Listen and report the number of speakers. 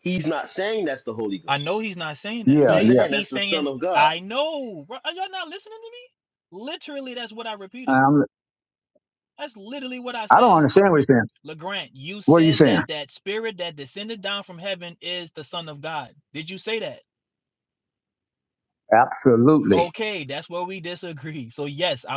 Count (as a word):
three